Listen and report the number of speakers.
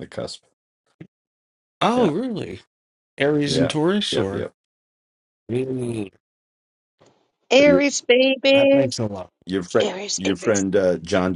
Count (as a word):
three